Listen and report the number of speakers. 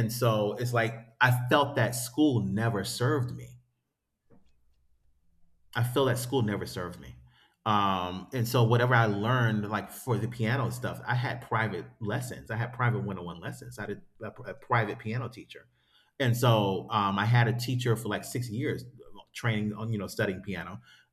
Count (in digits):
1